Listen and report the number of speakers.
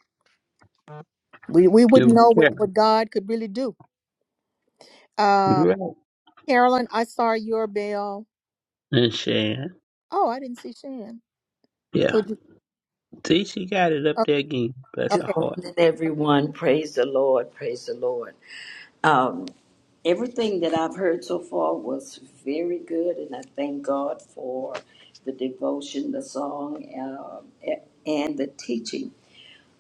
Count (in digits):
3